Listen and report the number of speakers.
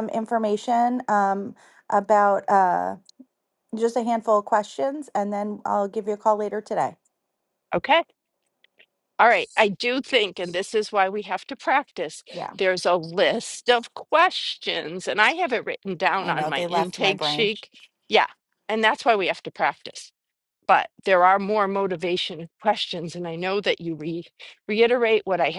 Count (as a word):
two